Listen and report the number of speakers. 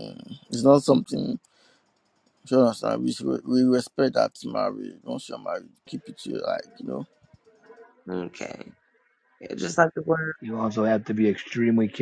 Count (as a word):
three